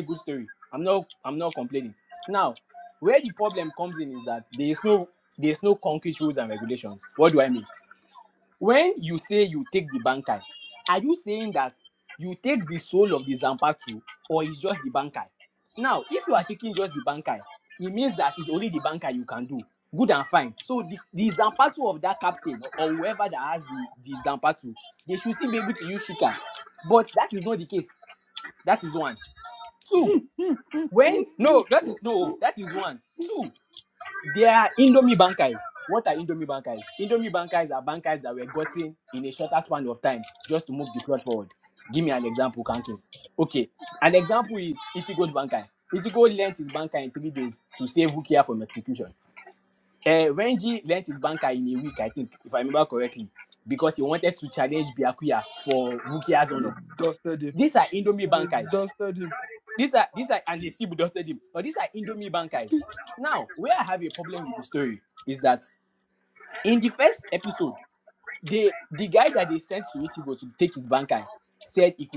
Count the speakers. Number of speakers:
two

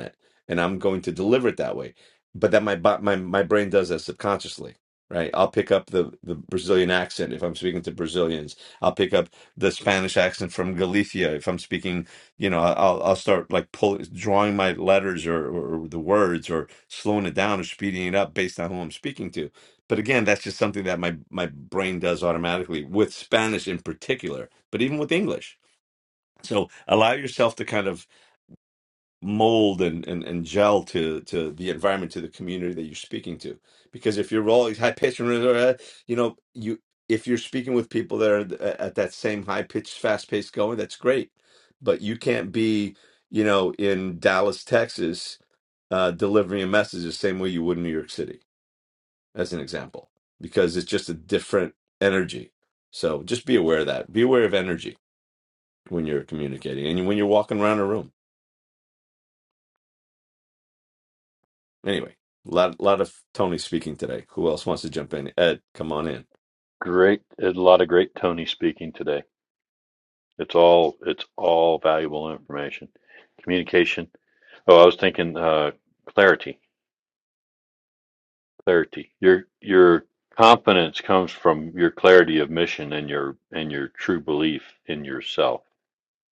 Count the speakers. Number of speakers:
two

